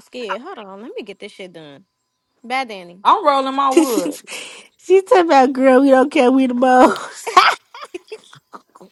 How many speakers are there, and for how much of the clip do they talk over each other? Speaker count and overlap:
3, about 5%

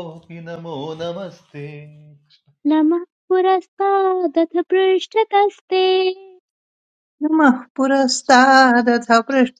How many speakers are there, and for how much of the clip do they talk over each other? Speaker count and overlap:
3, no overlap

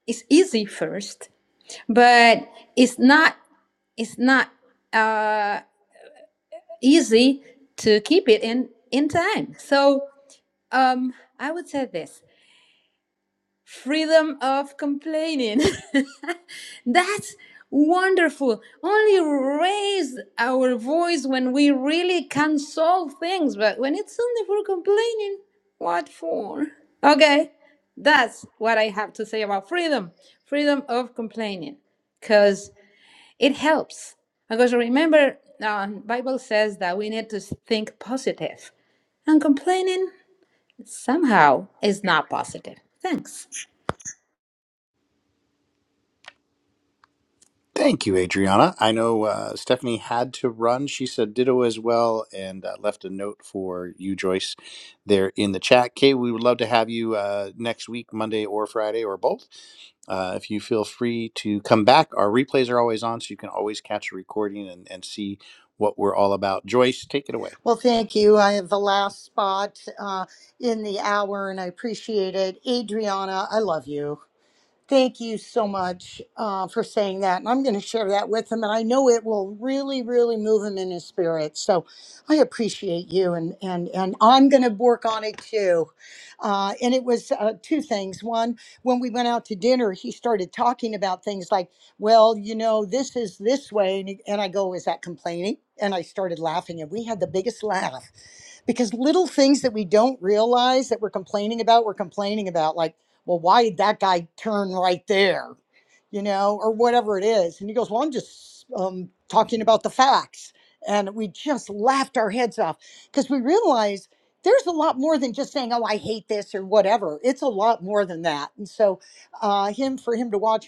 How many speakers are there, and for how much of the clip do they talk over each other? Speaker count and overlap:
3, no overlap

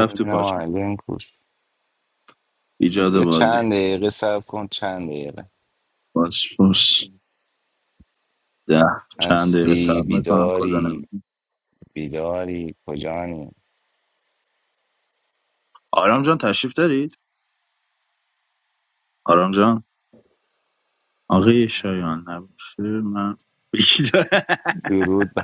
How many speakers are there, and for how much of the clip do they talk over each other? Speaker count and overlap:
2, about 12%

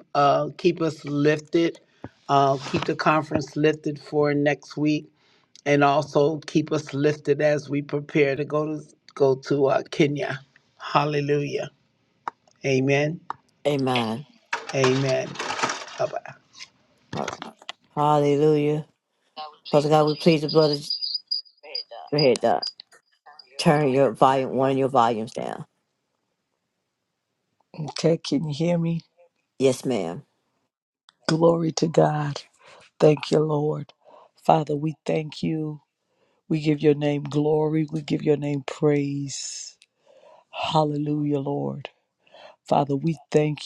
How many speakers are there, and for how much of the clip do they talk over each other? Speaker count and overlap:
3, no overlap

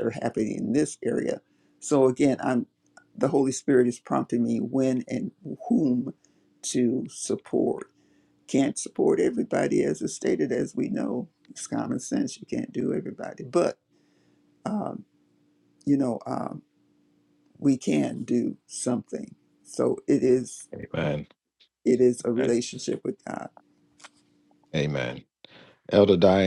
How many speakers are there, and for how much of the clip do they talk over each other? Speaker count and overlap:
2, about 1%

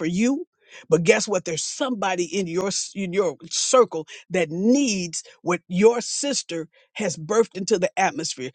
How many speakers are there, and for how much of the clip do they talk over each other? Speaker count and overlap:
1, no overlap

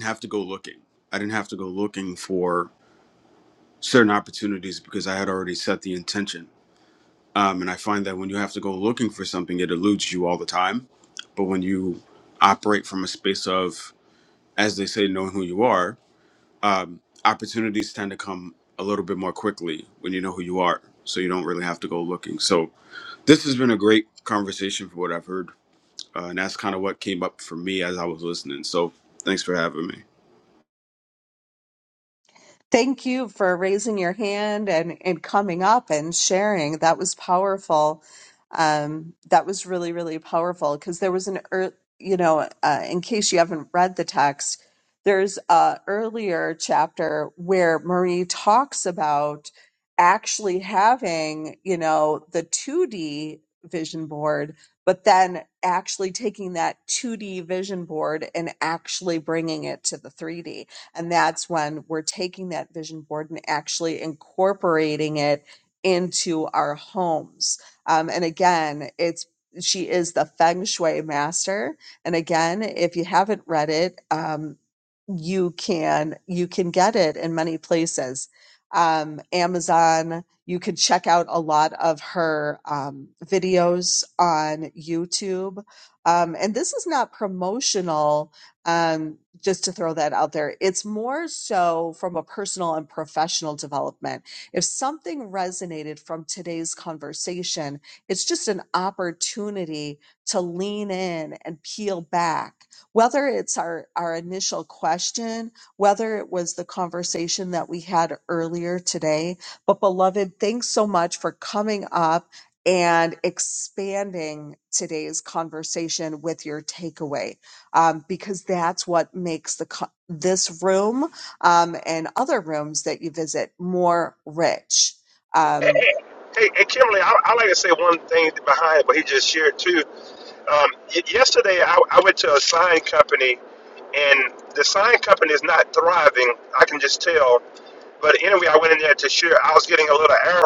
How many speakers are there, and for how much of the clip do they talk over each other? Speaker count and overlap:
3, no overlap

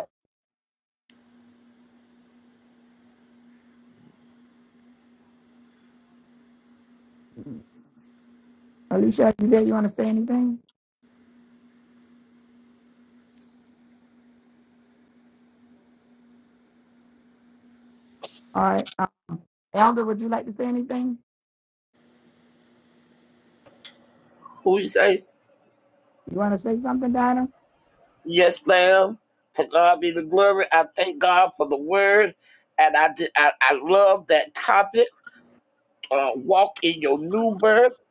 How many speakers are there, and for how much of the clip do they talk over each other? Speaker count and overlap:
2, no overlap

